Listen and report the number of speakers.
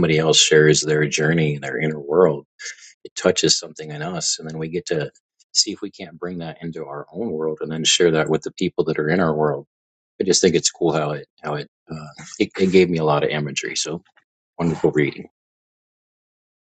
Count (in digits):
1